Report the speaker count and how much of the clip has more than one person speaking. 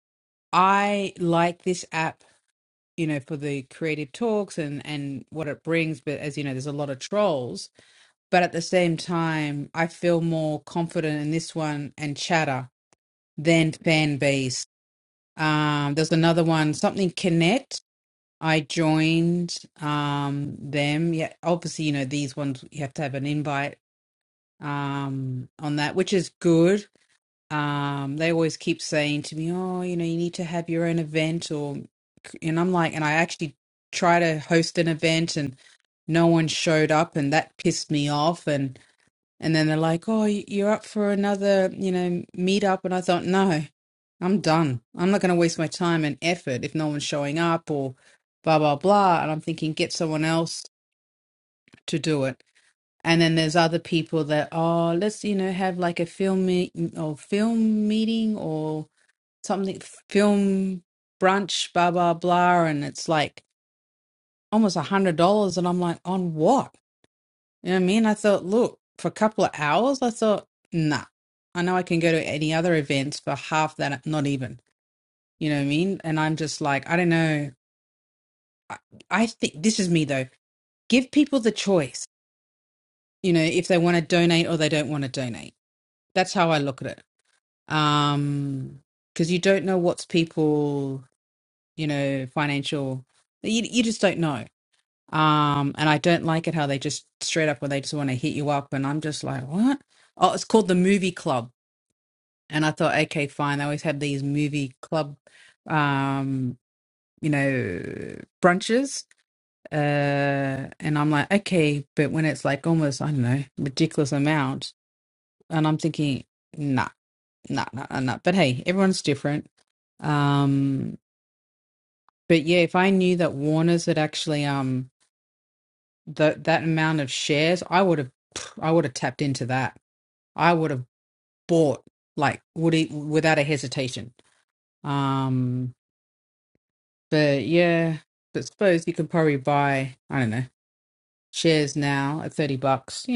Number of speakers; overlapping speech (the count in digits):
1, no overlap